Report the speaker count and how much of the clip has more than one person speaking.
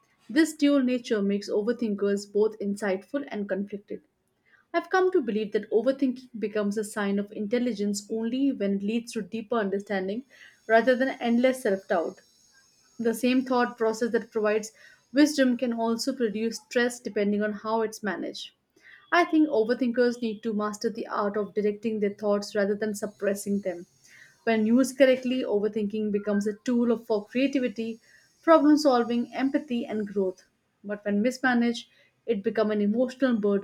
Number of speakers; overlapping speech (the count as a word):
one, no overlap